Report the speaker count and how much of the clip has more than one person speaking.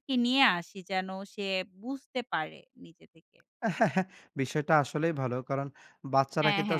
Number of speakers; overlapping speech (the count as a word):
two, about 6%